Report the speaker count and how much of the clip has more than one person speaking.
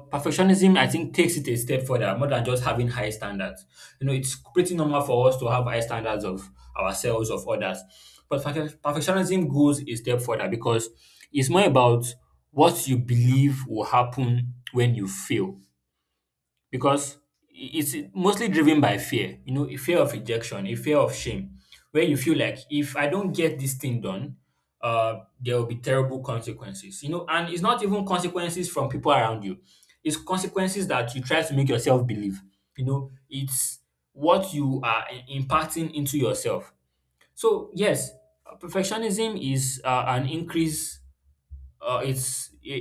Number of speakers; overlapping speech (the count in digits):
1, no overlap